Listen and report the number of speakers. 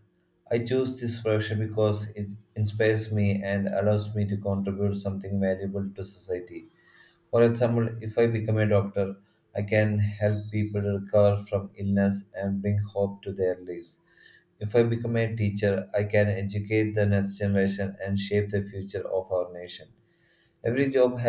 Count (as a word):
one